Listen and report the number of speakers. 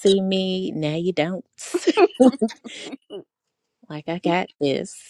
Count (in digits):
1